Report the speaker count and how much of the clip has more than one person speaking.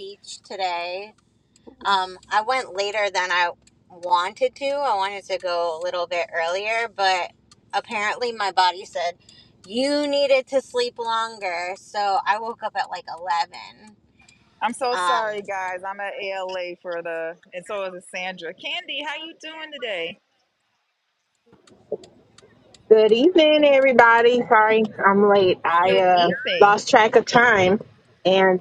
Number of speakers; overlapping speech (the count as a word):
three, about 5%